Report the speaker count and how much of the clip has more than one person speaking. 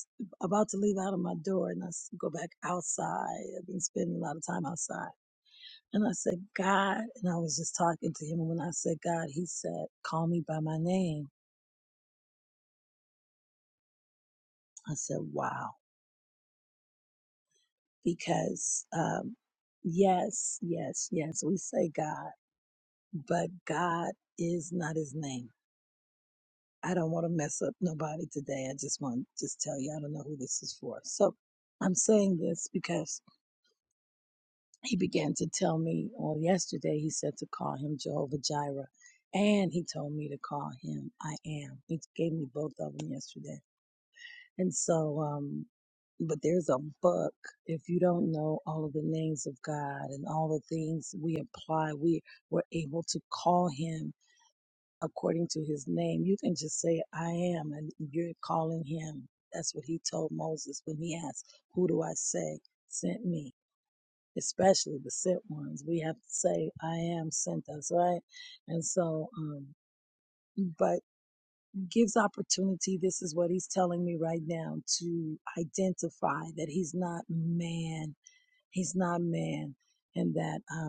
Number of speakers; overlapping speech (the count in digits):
1, no overlap